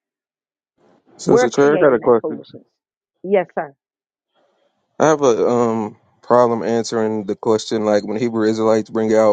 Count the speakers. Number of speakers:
2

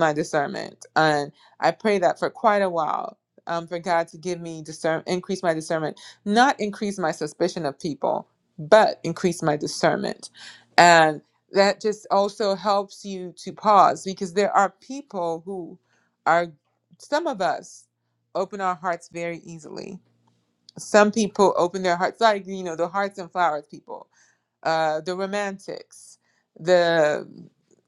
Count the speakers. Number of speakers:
1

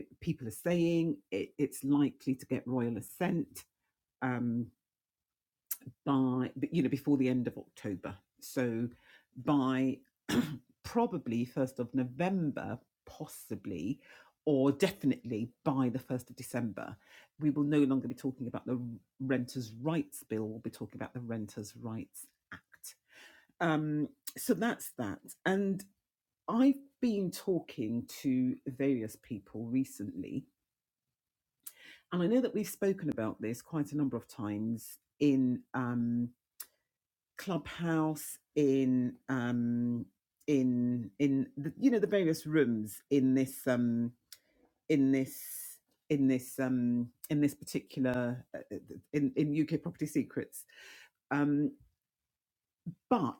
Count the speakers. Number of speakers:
1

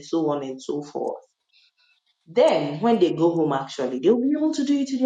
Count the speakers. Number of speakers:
1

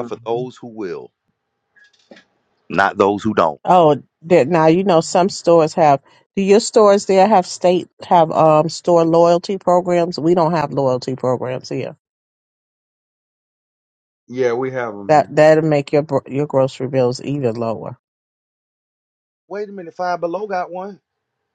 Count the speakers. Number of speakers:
3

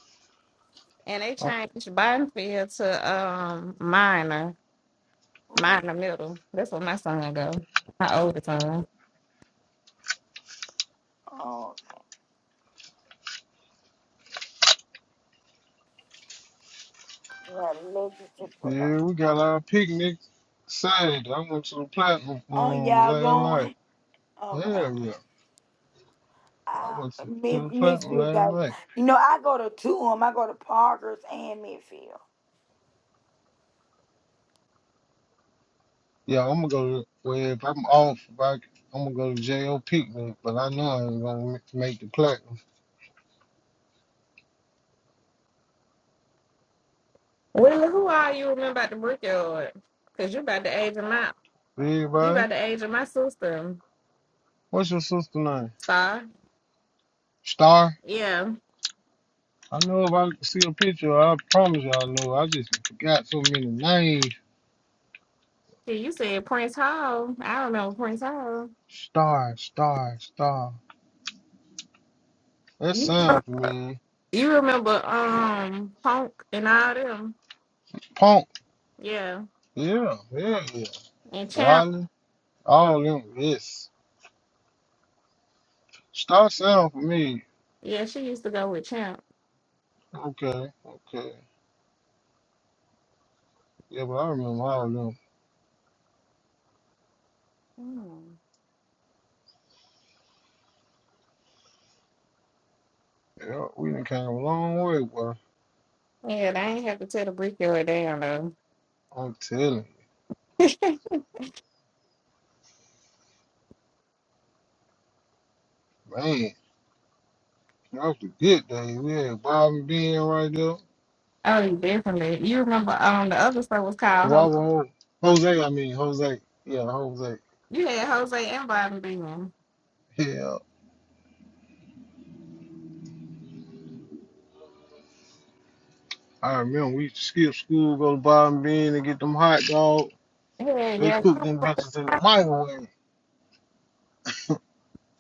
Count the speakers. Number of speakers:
3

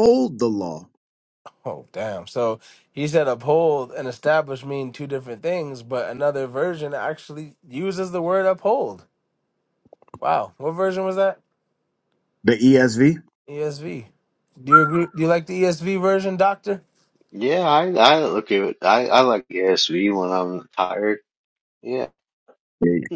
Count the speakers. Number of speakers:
3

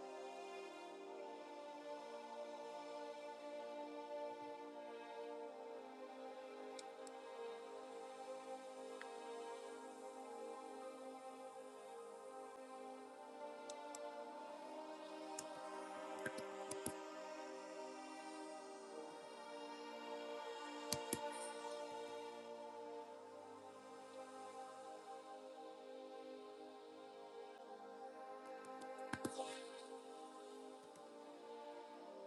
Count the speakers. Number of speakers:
0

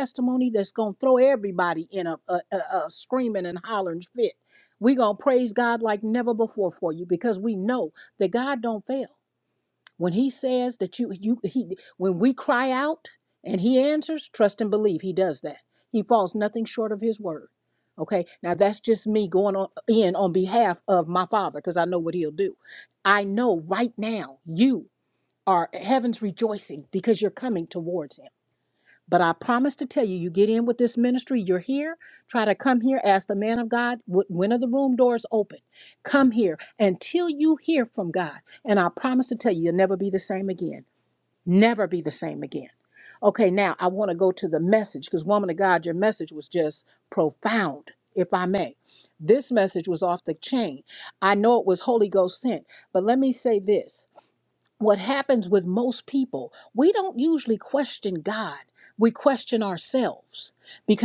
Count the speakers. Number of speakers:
1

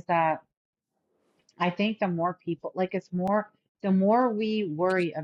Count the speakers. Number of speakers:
1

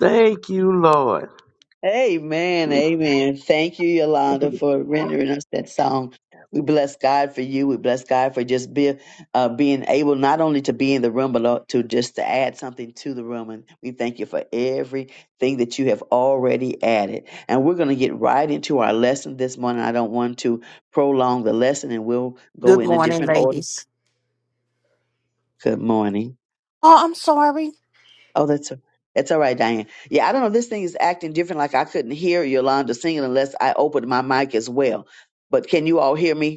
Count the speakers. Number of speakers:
3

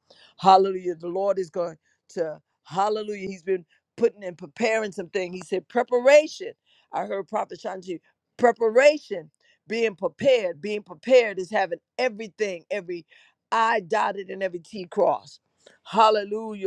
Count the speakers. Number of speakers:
1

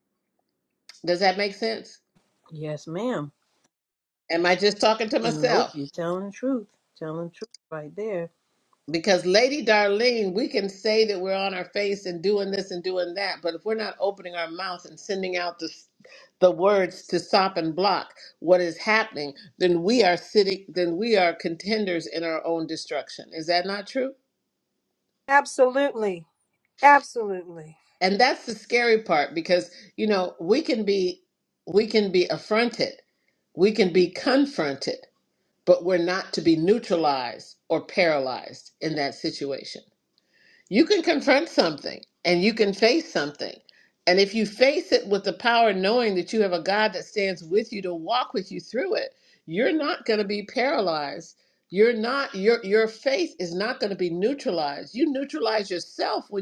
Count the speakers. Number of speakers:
3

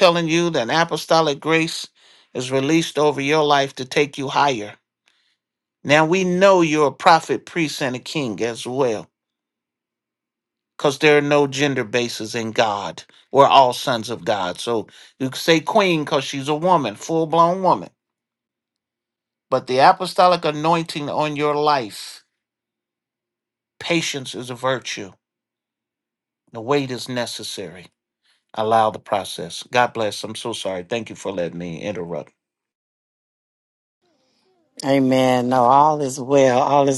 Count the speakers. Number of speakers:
2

